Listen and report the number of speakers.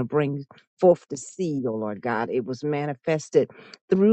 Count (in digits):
1